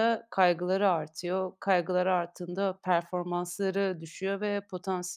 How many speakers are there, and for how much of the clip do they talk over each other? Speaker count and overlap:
one, no overlap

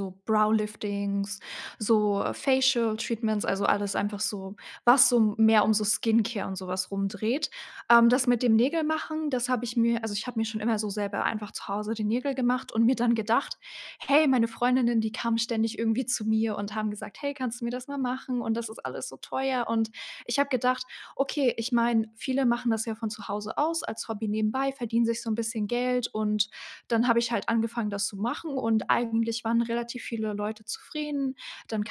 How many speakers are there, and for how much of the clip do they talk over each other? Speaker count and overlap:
one, no overlap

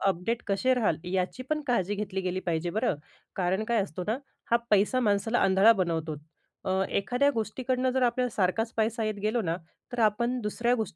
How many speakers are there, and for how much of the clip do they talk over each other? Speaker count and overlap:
one, no overlap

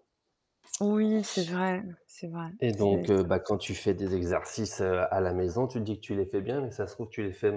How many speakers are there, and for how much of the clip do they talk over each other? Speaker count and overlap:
two, about 6%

